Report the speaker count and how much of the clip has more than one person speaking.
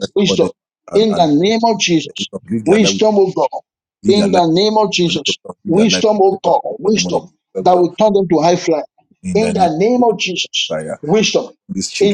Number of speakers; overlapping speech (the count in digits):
2, about 37%